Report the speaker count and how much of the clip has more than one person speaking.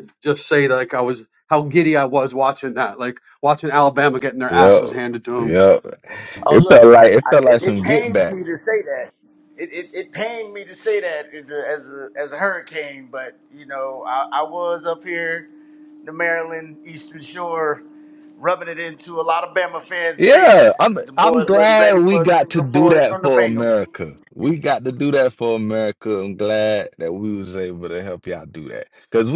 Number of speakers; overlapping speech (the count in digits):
3, about 17%